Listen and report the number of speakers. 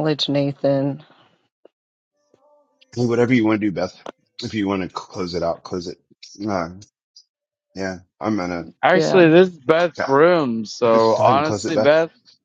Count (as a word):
three